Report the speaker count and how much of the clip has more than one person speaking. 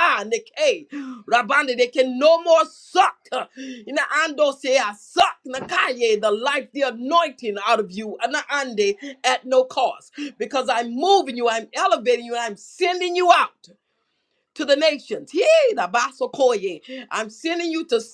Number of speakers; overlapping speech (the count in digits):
1, no overlap